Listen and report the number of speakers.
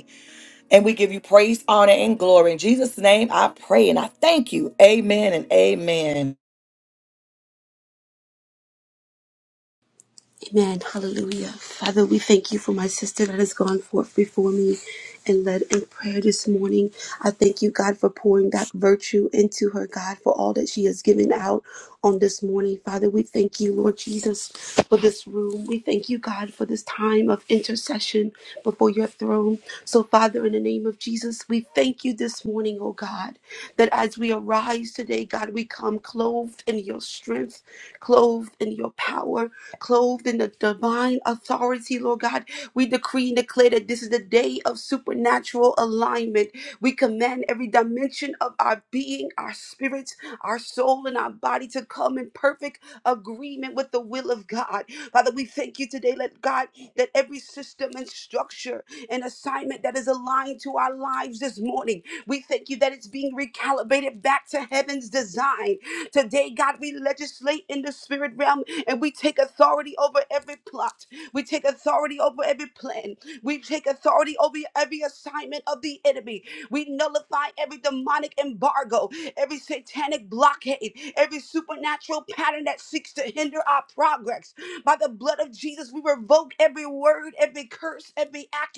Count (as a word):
two